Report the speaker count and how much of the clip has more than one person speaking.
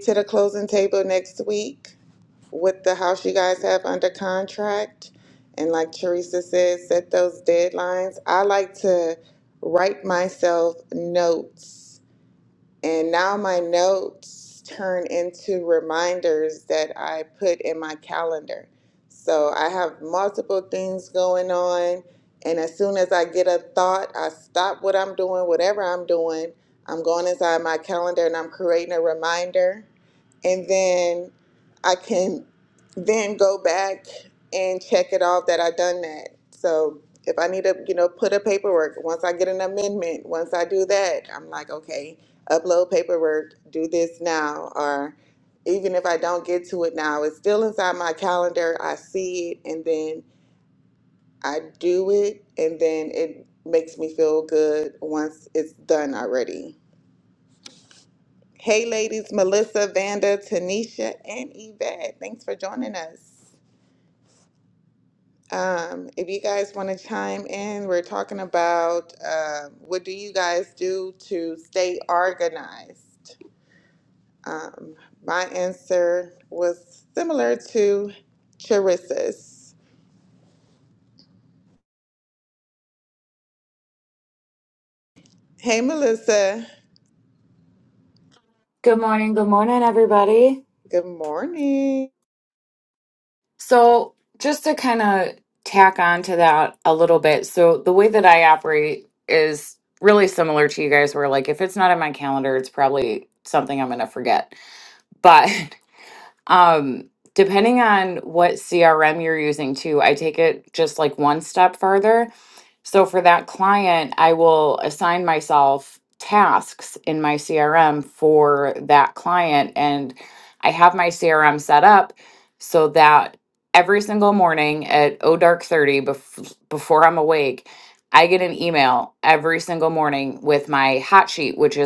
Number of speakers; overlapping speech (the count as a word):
two, no overlap